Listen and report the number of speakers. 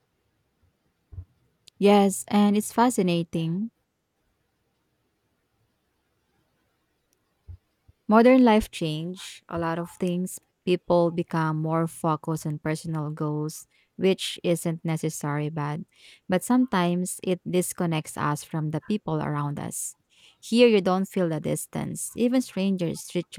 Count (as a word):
one